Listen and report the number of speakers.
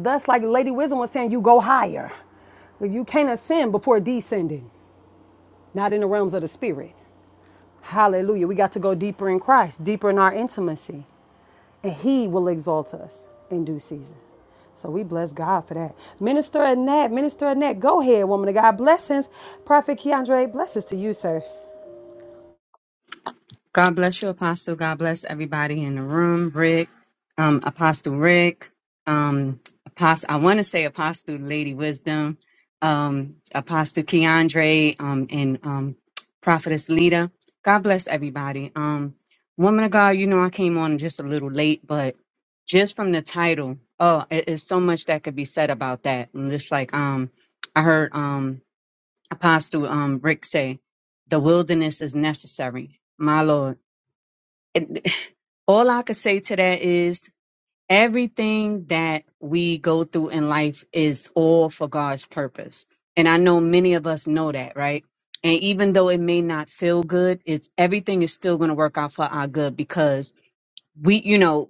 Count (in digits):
2